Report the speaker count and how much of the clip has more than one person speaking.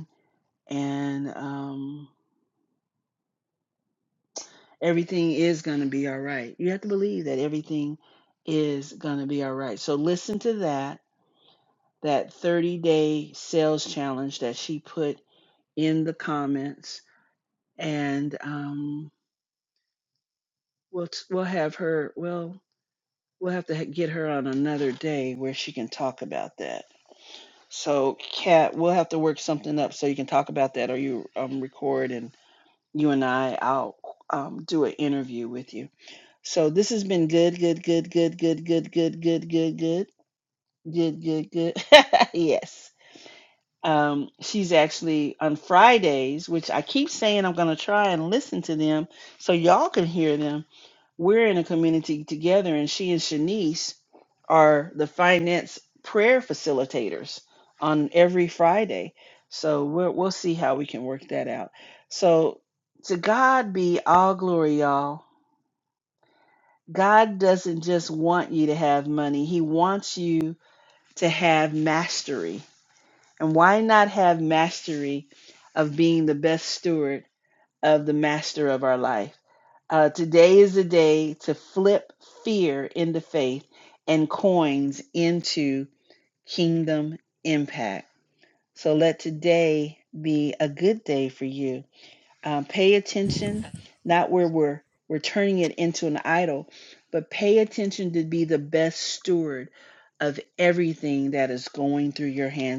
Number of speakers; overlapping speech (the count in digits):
1, no overlap